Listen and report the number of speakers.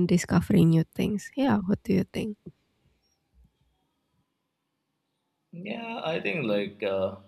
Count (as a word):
two